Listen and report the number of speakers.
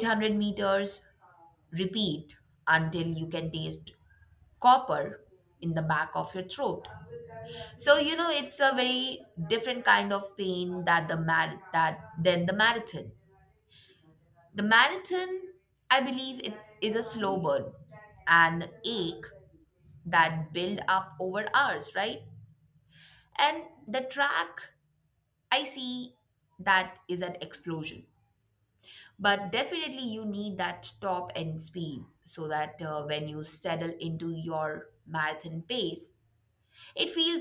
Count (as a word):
one